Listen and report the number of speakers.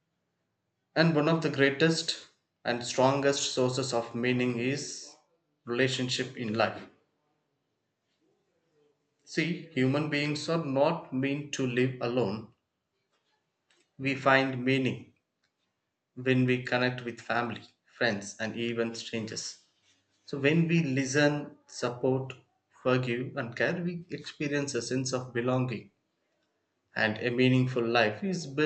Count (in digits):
1